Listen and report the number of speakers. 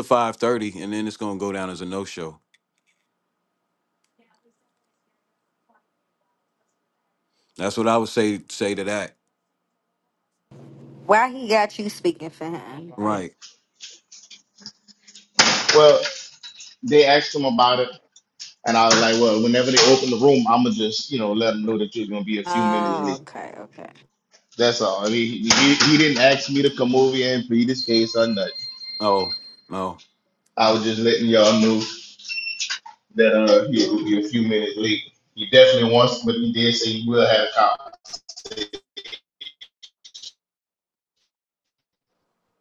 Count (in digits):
3